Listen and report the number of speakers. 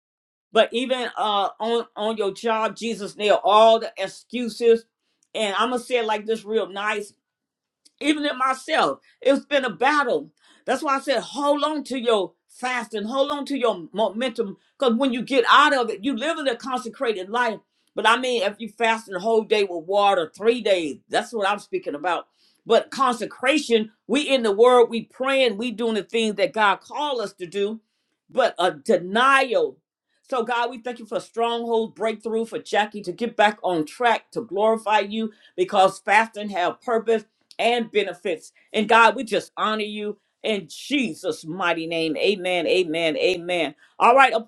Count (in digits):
1